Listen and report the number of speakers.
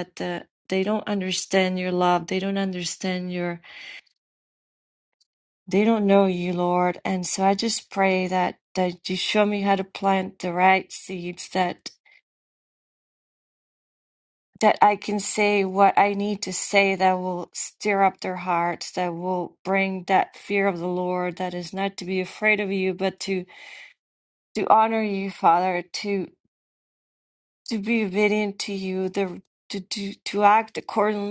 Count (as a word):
one